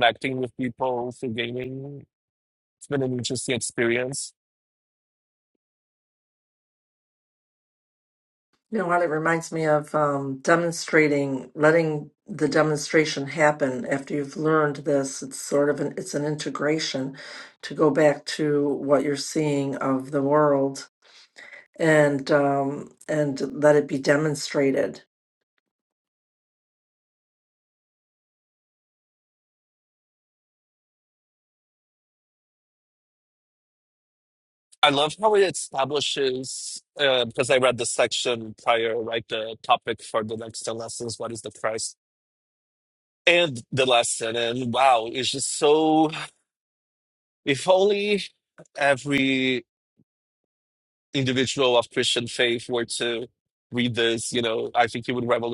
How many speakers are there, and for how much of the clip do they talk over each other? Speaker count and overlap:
2, no overlap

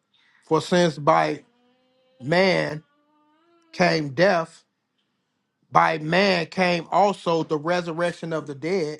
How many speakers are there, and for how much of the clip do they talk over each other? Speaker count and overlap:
1, no overlap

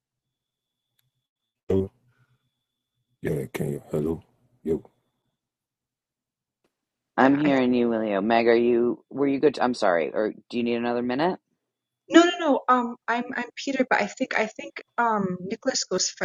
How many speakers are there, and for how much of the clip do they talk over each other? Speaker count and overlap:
3, about 2%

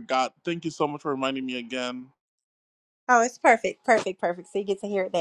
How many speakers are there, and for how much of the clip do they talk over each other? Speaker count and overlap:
2, no overlap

